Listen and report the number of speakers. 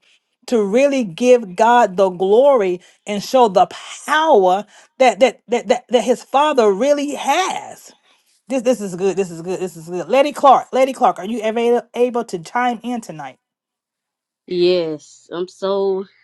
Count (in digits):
2